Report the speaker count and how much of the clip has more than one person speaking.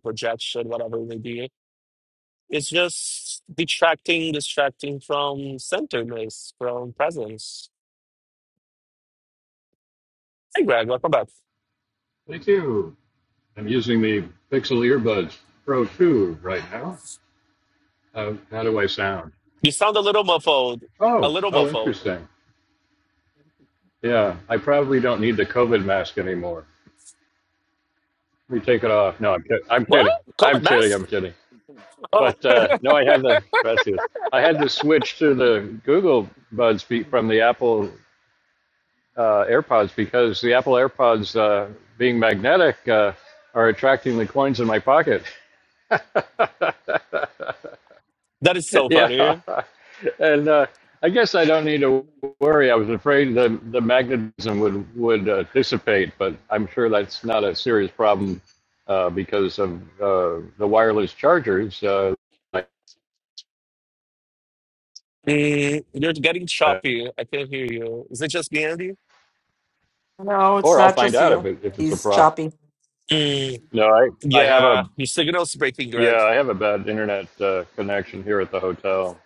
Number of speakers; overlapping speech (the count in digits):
3, about 6%